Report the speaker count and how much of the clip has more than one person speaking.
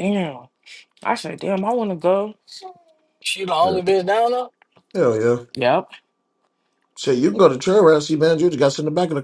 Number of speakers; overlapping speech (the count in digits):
3, about 2%